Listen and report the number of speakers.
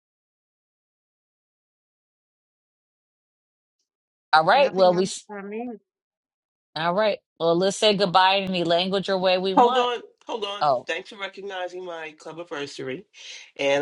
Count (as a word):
three